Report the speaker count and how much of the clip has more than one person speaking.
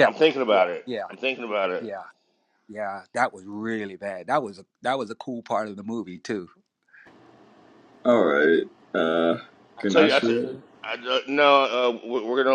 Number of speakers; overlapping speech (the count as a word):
three, about 8%